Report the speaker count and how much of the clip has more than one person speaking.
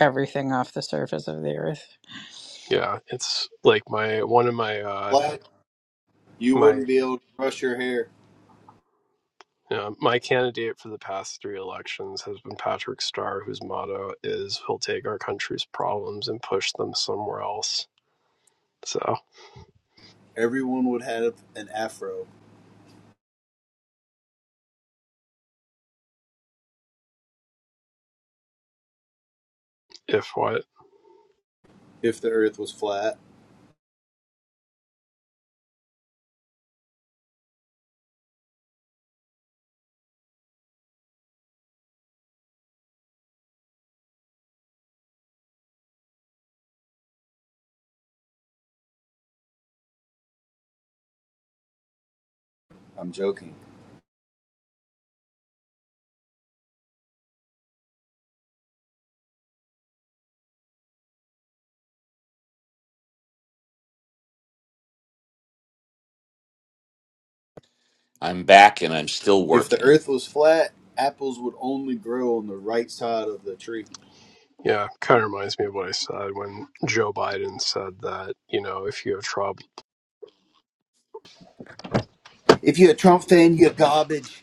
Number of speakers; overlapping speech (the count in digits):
4, about 1%